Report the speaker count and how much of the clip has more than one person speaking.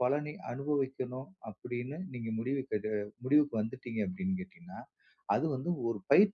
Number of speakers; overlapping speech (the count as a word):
one, no overlap